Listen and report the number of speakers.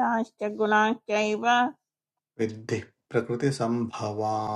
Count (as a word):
two